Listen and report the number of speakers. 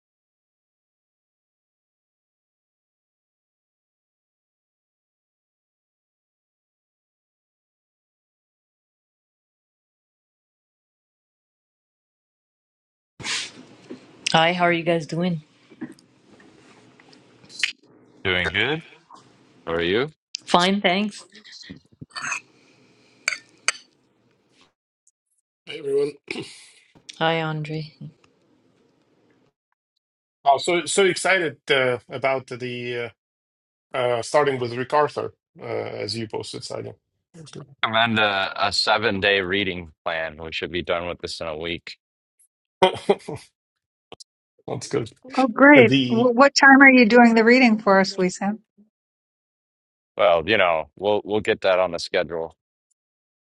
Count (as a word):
four